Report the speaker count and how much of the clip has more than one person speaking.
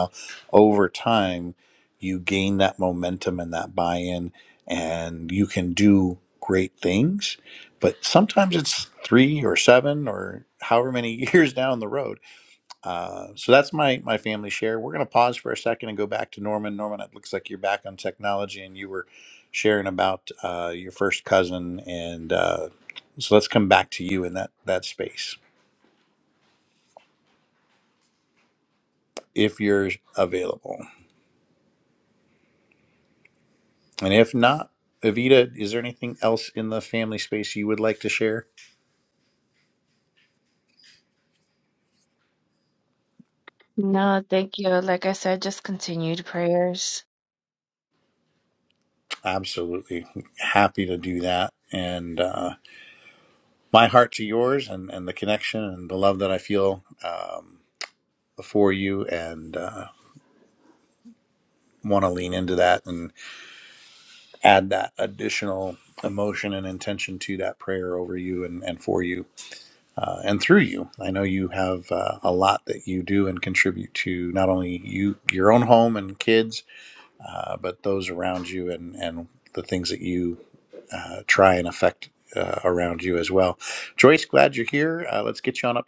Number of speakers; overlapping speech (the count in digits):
2, no overlap